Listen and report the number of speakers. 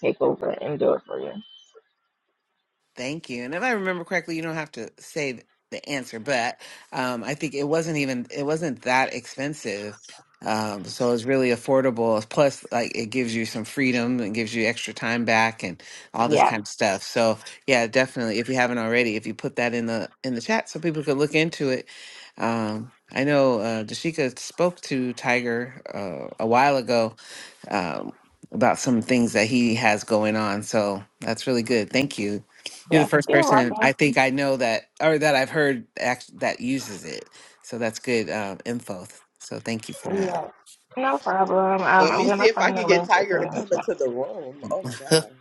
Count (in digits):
3